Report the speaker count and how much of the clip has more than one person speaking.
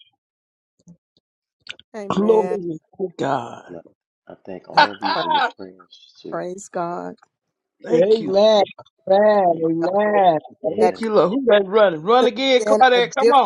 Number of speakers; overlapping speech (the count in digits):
4, about 23%